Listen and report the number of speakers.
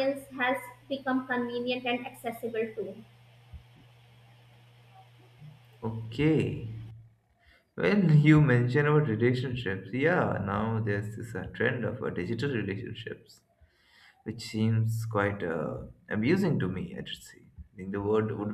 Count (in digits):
2